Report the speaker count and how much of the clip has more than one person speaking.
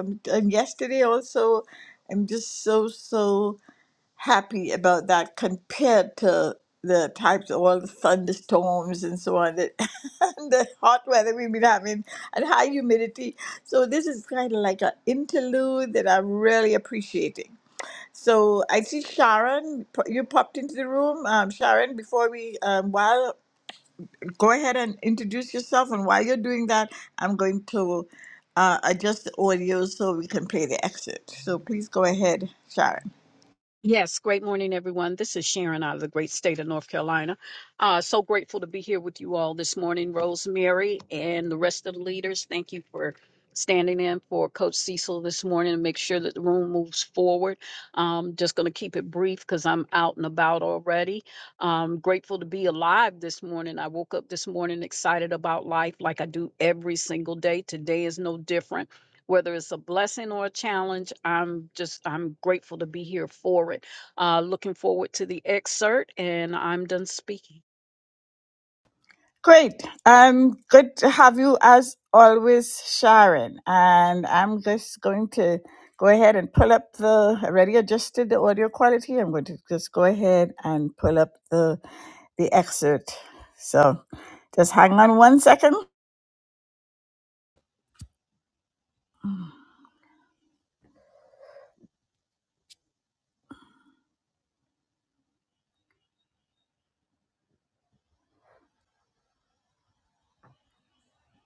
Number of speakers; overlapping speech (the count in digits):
2, no overlap